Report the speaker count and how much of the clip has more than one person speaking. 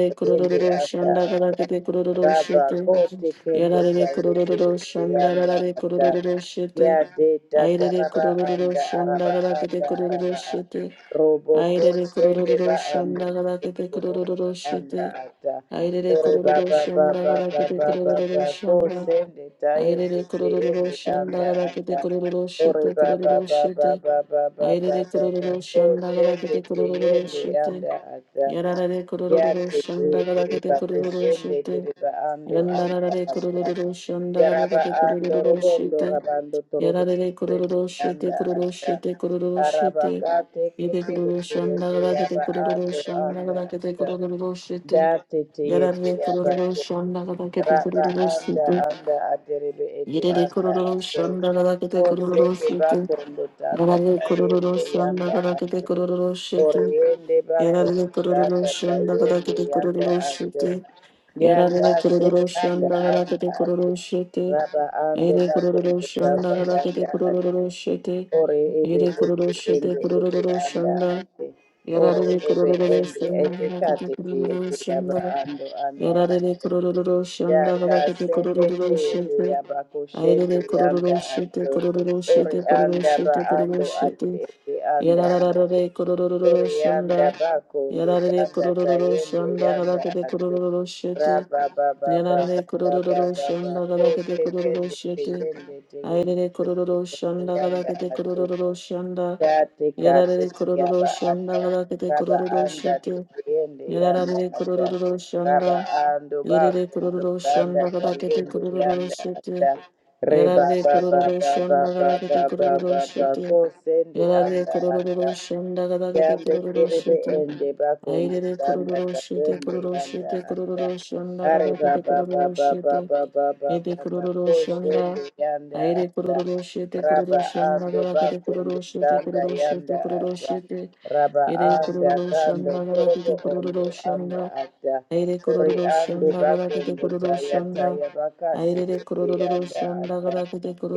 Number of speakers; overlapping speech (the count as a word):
two, about 69%